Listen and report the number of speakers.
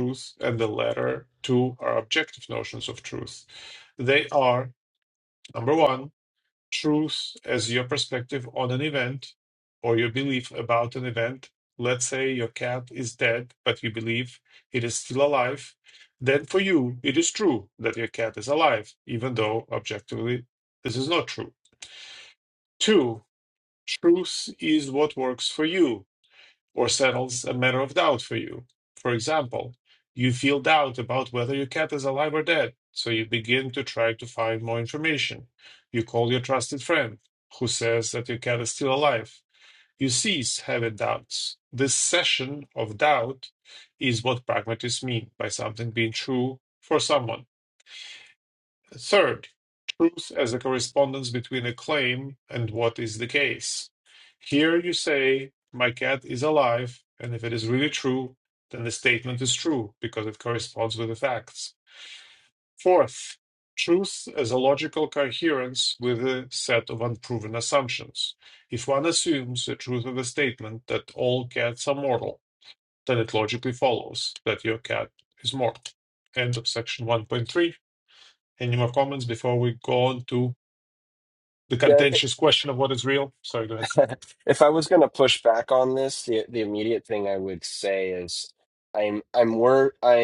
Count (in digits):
2